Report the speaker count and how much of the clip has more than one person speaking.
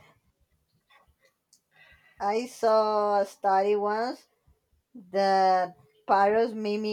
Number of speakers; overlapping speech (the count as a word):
one, no overlap